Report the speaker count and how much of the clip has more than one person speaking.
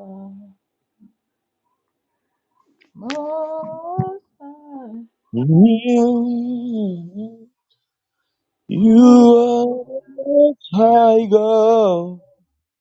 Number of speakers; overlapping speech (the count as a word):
two, about 8%